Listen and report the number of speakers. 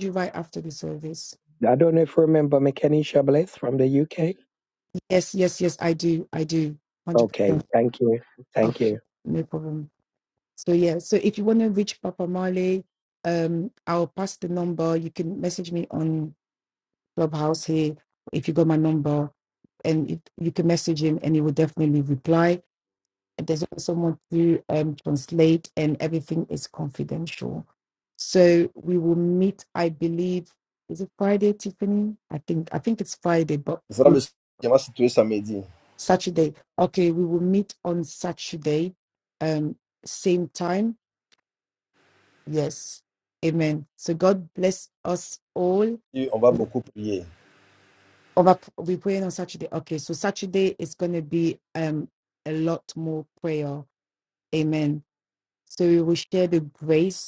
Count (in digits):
3